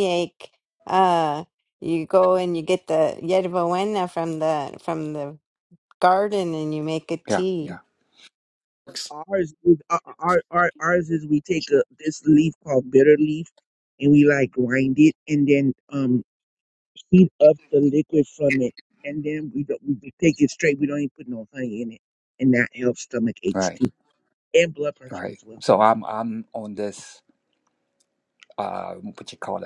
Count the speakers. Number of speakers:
3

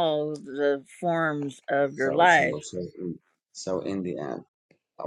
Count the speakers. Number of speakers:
2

